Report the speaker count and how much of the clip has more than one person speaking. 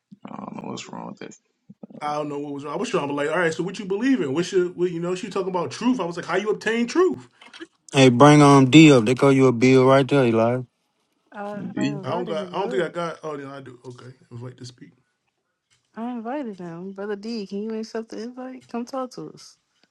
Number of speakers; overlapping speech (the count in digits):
4, about 6%